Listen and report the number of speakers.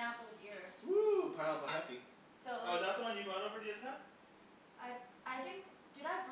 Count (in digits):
3